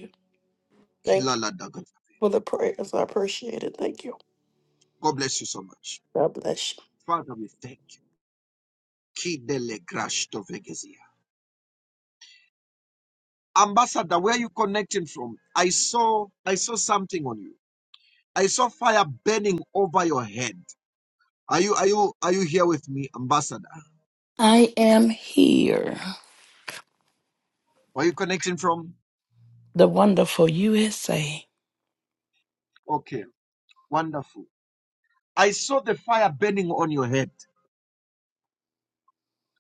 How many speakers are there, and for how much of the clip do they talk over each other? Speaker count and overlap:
three, about 1%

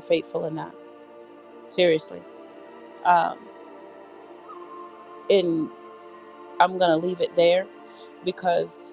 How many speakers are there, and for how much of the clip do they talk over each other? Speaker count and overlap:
one, no overlap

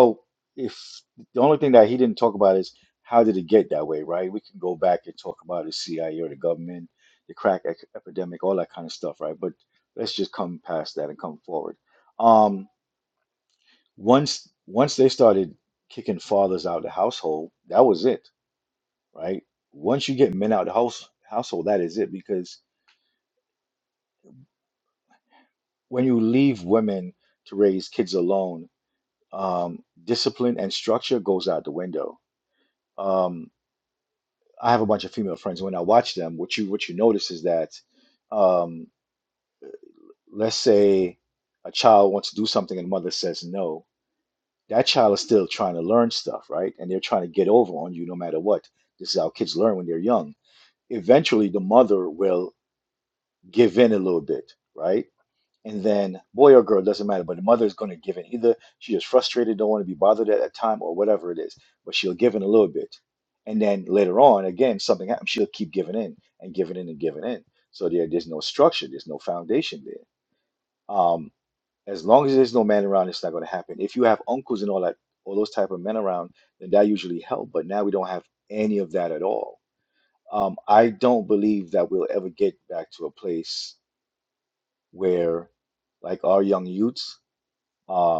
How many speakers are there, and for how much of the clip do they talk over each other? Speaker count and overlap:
one, no overlap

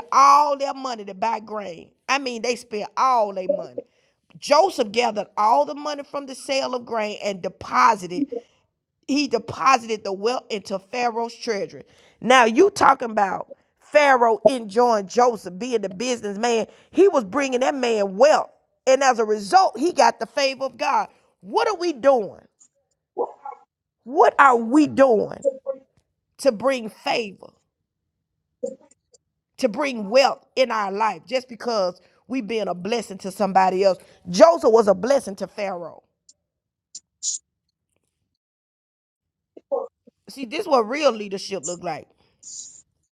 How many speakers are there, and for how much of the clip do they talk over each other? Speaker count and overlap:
one, no overlap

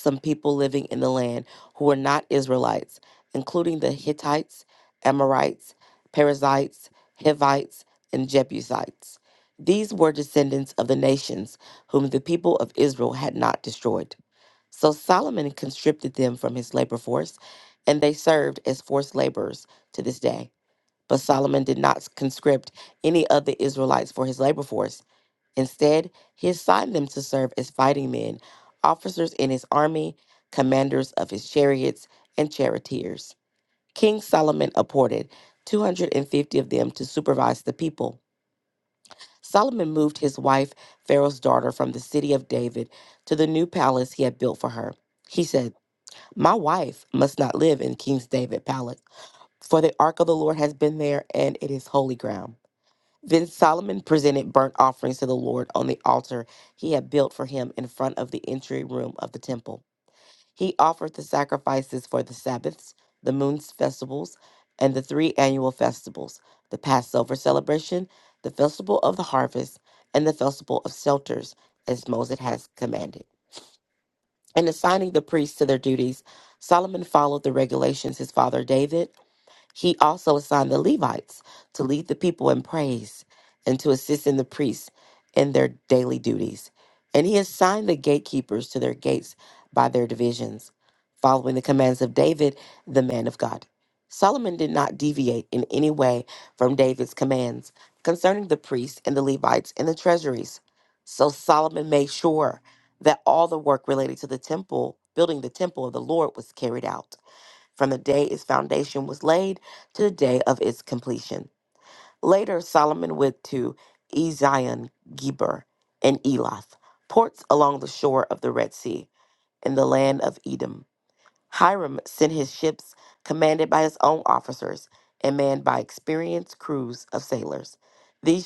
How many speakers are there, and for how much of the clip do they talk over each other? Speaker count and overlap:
one, no overlap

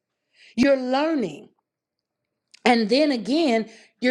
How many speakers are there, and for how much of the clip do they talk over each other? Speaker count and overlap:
one, no overlap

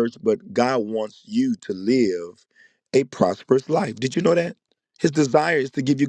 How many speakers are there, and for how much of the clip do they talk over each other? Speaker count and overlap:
one, no overlap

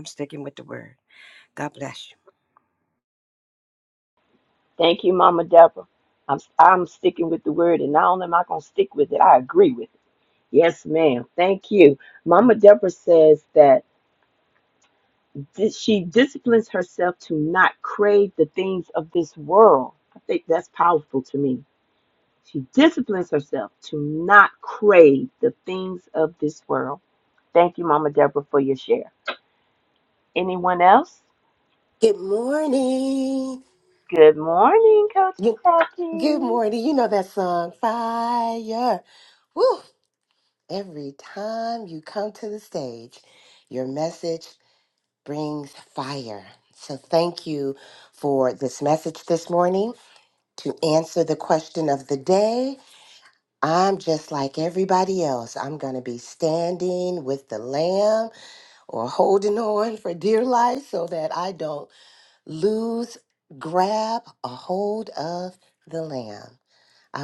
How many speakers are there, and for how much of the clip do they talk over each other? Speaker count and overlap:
three, about 1%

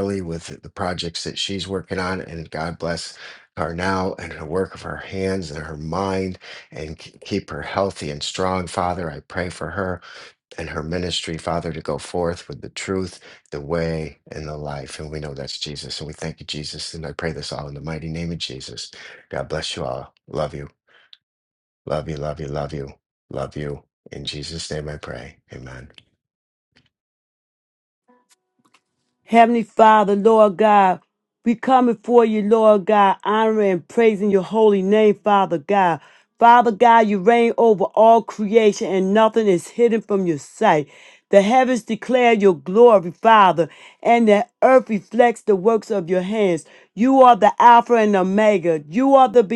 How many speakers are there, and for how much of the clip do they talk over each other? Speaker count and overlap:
two, no overlap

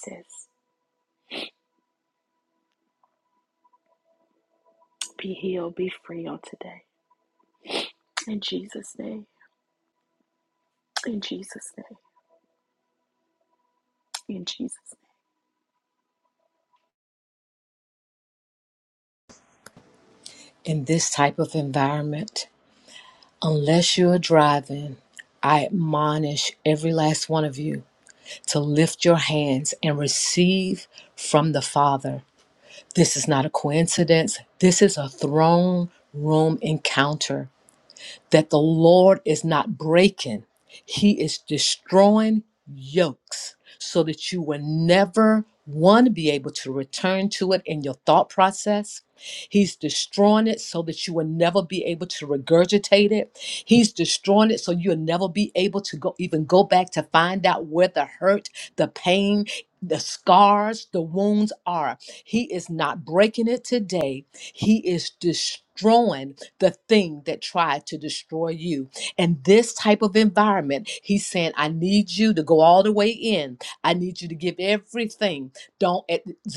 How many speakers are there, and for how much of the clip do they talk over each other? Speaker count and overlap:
two, no overlap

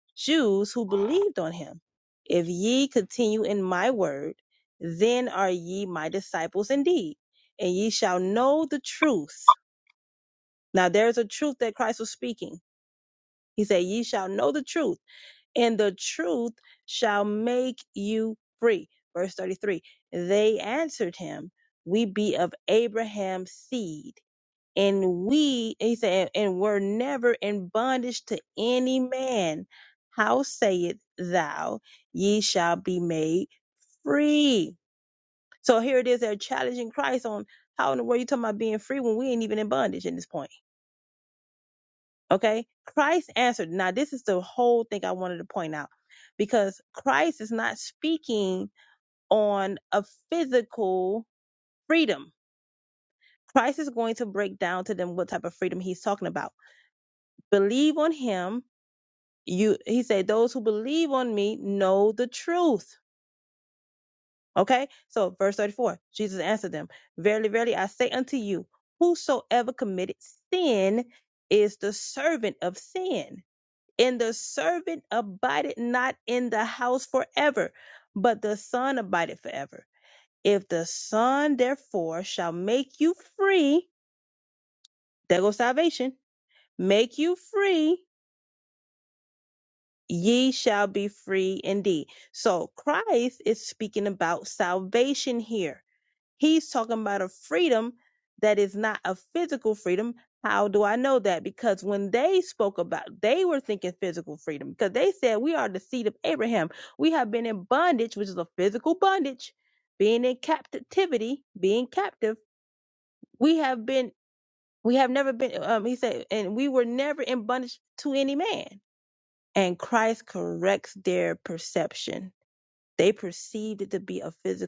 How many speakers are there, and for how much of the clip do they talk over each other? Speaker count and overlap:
one, no overlap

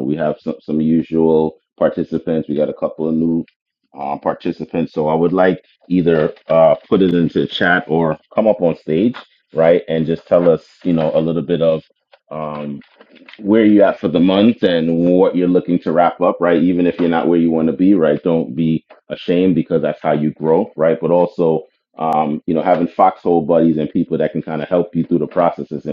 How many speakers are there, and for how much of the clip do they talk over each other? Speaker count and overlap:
one, no overlap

